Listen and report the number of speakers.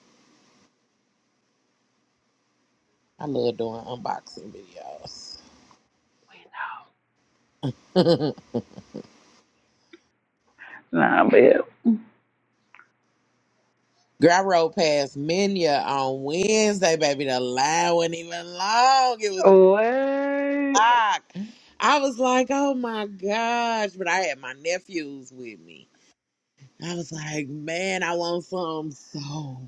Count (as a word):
two